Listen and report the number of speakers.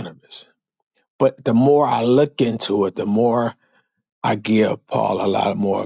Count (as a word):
one